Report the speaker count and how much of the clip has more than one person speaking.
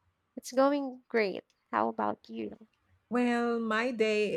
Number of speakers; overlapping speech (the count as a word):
two, no overlap